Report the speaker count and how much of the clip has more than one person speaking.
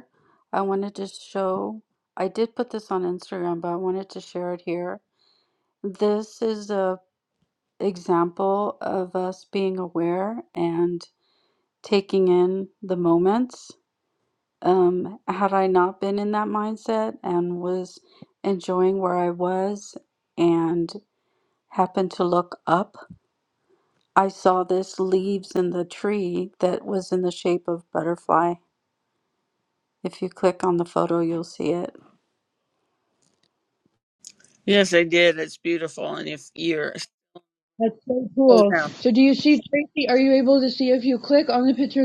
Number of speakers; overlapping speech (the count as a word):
three, about 1%